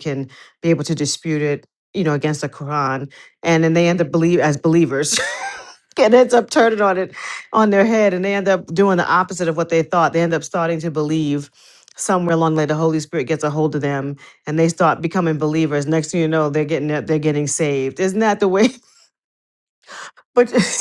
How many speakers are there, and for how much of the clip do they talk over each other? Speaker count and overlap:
1, no overlap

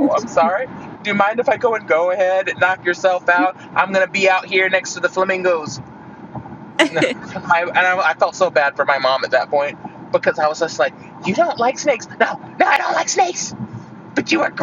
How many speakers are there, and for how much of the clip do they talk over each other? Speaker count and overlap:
1, no overlap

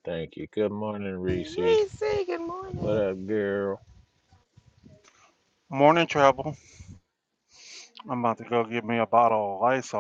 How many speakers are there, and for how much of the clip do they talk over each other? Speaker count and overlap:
3, about 8%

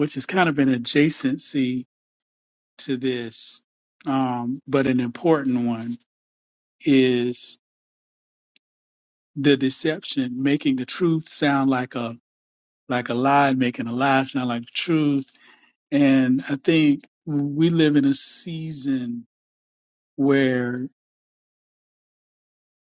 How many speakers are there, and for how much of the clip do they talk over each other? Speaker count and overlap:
1, no overlap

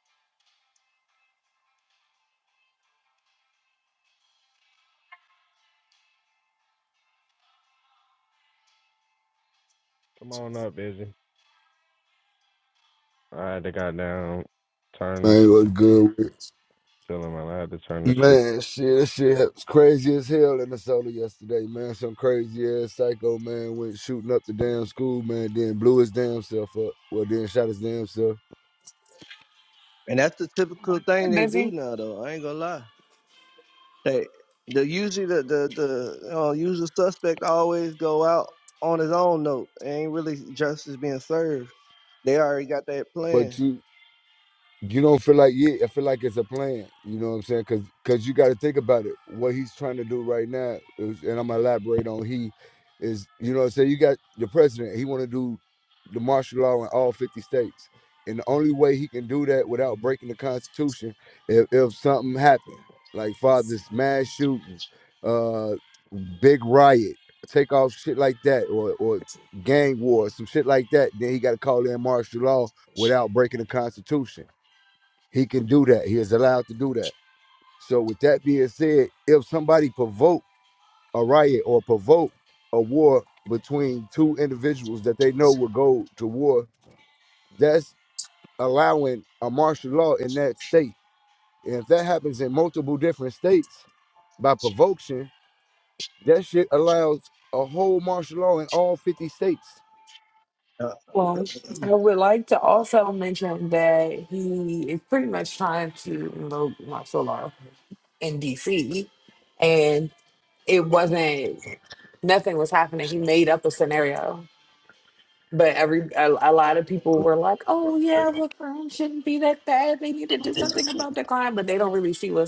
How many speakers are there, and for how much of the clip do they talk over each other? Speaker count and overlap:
4, about 1%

